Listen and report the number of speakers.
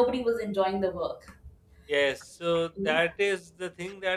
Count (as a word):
two